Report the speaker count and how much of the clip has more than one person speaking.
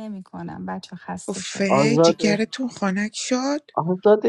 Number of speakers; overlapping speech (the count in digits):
3, about 26%